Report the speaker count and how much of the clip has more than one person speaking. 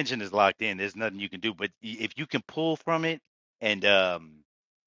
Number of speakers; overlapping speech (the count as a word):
one, no overlap